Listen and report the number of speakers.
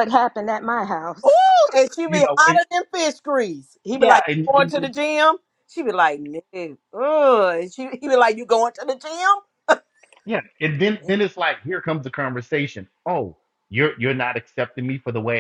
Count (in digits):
3